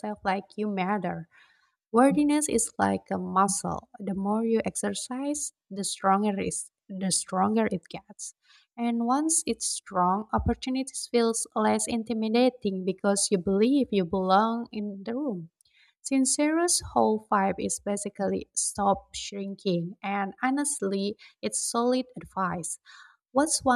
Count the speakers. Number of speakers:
one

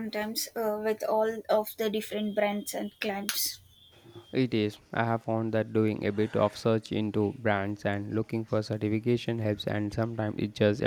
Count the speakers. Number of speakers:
two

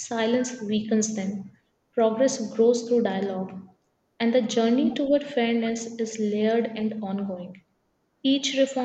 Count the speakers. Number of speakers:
one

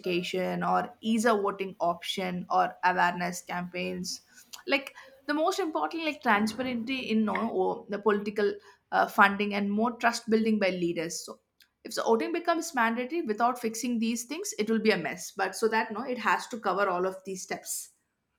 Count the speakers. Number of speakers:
one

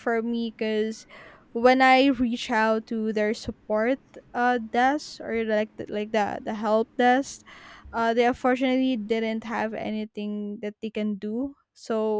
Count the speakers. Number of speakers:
one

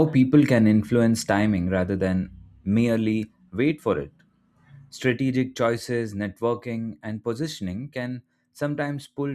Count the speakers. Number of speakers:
one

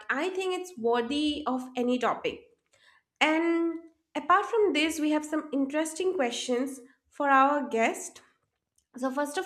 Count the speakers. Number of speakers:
one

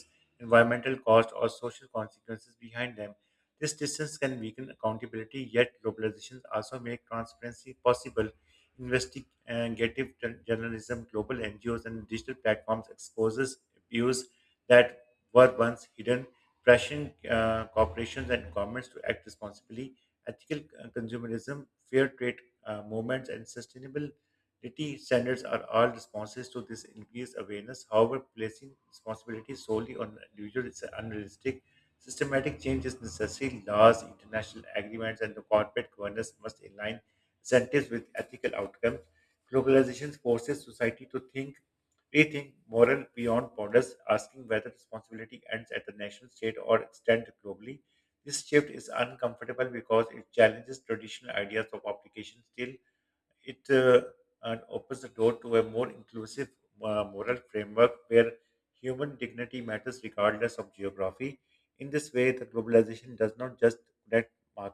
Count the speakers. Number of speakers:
one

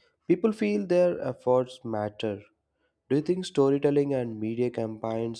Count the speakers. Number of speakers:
one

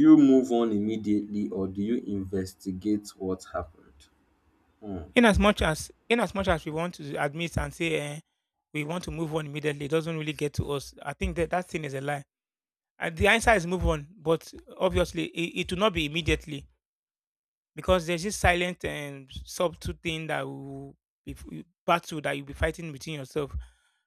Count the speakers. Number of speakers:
two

